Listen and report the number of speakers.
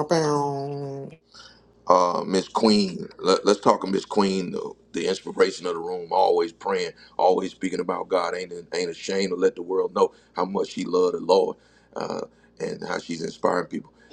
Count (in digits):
2